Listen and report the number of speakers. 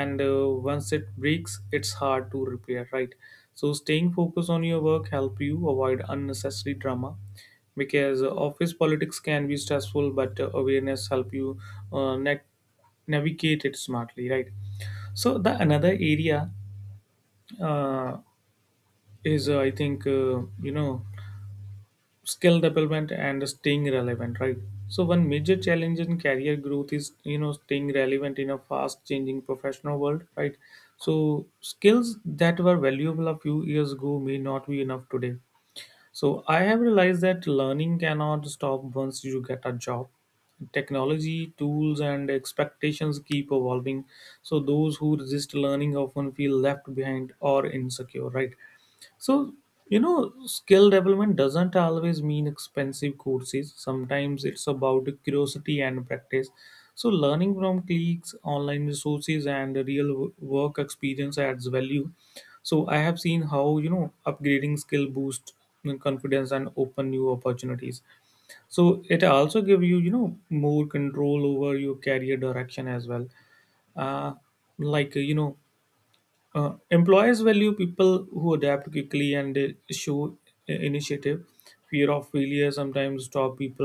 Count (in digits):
1